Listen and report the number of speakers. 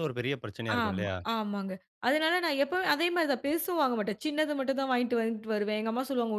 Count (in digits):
2